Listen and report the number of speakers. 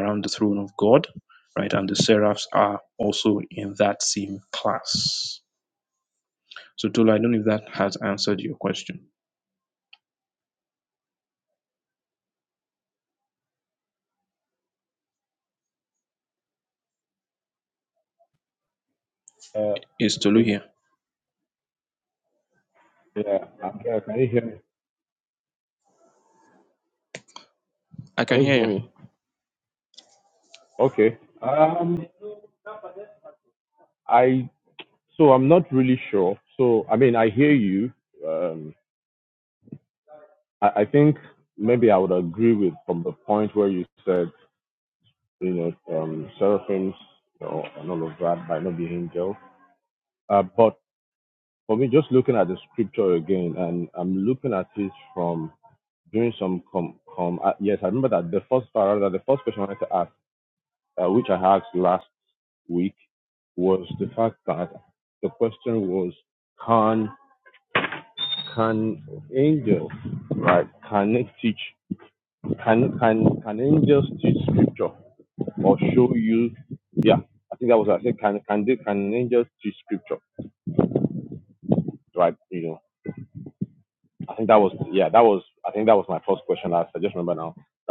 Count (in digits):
2